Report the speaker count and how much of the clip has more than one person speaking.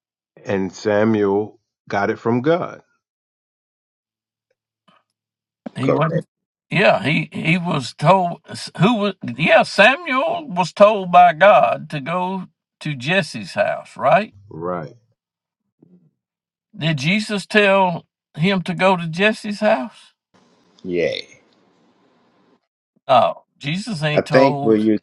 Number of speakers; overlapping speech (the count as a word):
three, about 5%